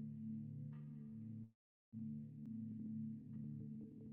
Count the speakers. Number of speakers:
0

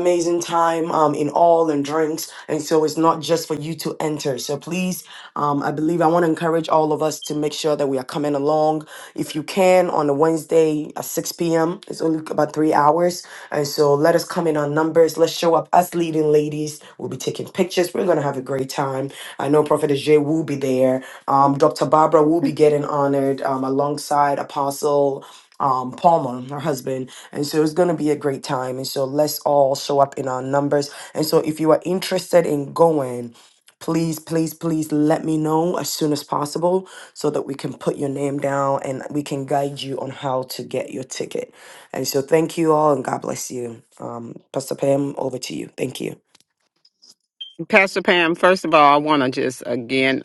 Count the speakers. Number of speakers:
2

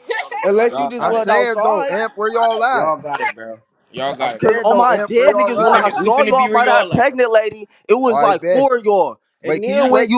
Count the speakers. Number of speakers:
3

